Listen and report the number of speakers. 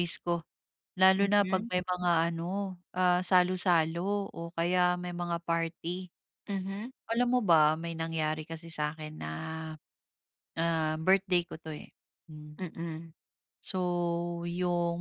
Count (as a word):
two